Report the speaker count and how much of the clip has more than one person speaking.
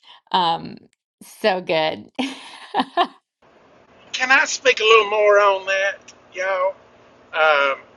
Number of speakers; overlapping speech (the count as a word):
two, no overlap